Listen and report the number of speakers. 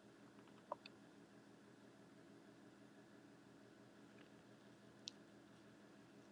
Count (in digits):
0